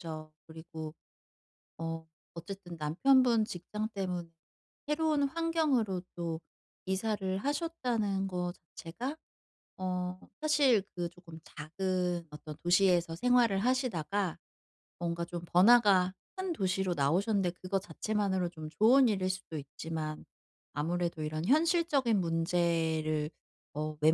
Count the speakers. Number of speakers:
one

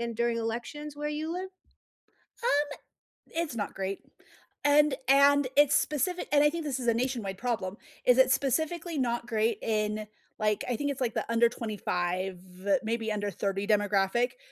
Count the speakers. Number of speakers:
two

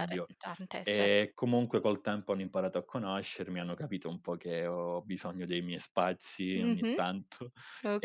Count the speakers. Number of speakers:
two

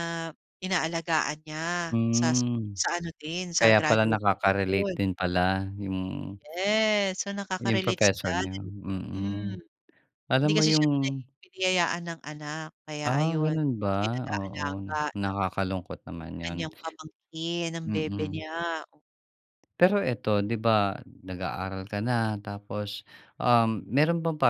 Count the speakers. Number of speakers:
two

